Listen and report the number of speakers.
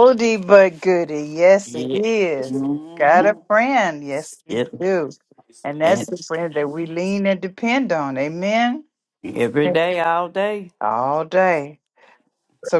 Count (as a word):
two